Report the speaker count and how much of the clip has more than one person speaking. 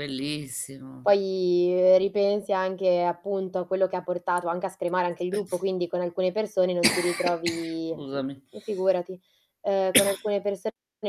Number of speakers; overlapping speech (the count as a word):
two, about 2%